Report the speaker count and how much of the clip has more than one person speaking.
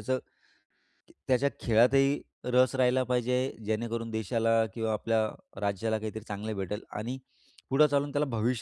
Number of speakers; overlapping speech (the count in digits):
1, no overlap